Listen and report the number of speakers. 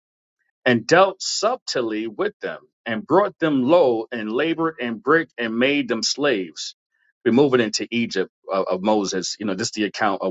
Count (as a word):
one